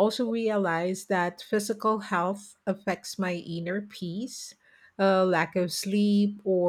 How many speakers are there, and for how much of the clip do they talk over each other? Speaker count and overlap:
1, no overlap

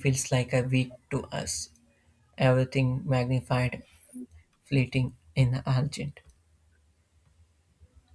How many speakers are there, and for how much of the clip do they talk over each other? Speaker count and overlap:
1, no overlap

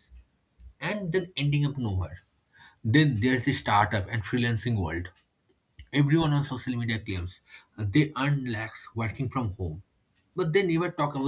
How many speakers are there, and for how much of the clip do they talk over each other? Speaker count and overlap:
1, no overlap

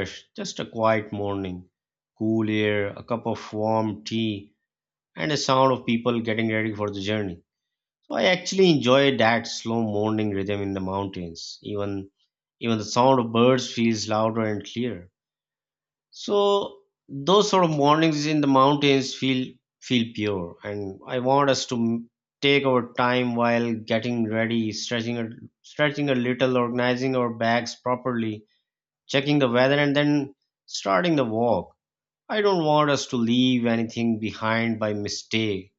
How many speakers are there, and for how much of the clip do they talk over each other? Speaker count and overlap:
1, no overlap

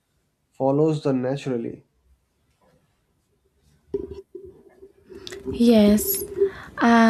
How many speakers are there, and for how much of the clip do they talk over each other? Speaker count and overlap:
2, no overlap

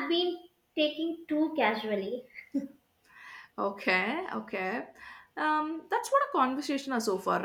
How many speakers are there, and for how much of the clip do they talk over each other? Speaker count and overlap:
2, no overlap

